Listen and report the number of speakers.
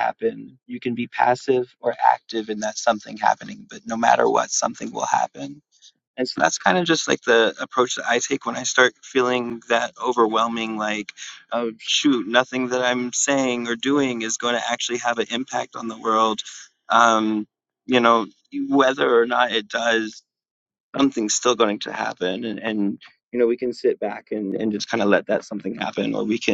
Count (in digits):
1